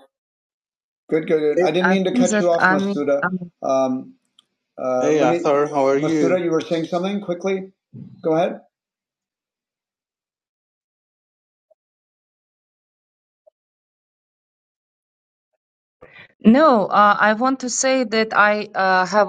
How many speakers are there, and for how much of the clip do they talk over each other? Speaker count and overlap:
3, about 13%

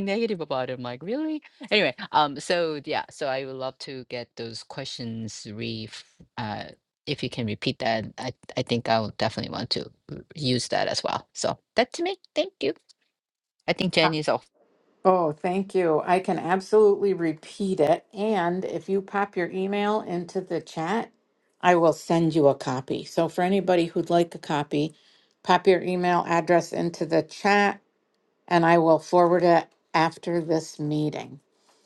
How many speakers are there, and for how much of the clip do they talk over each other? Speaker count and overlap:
2, under 1%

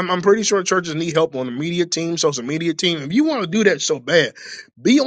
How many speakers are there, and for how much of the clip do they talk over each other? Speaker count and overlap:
1, no overlap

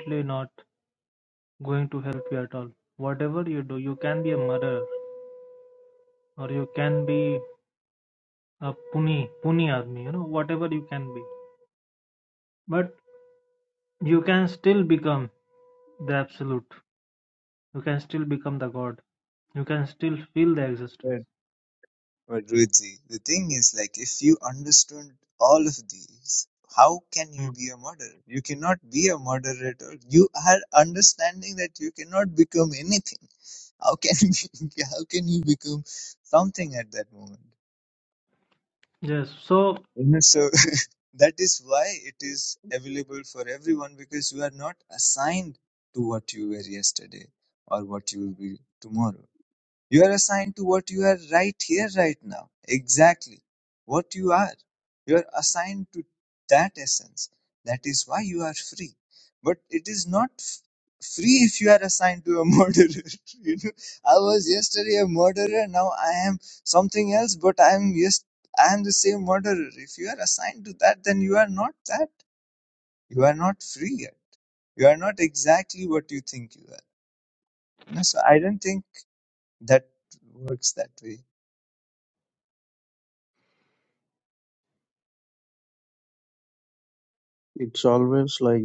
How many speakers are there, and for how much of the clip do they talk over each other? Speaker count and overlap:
3, under 1%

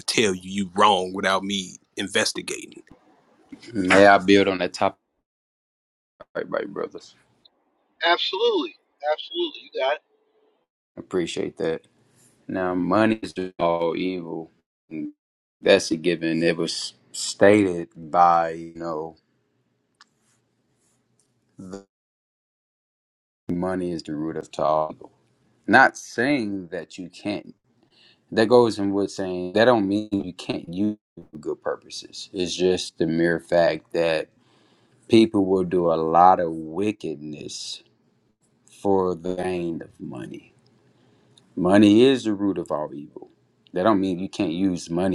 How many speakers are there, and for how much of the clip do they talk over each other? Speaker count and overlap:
3, no overlap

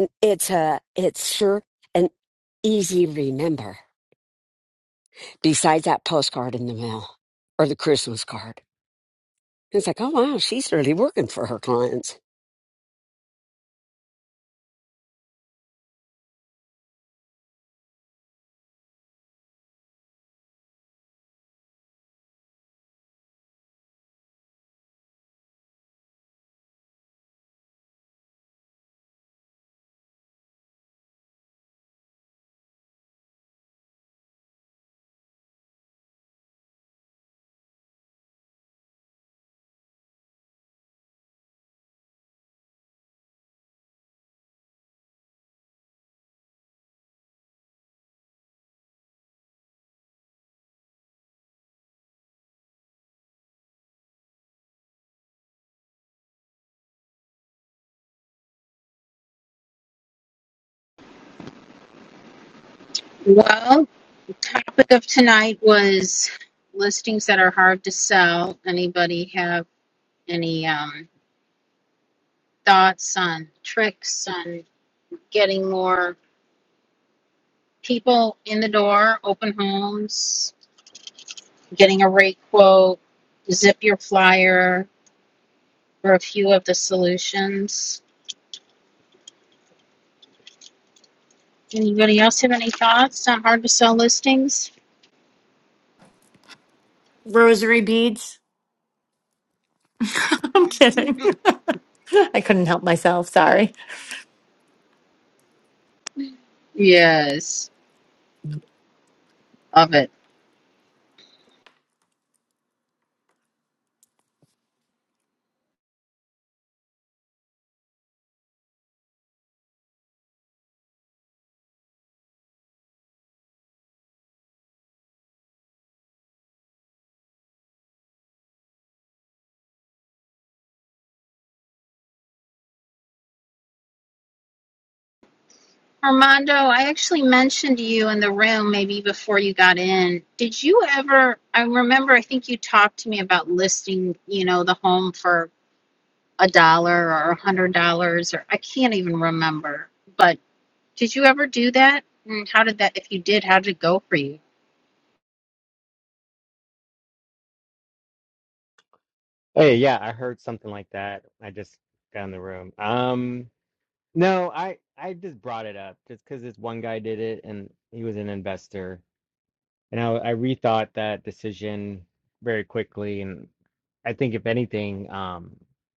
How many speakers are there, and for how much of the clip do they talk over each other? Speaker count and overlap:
4, no overlap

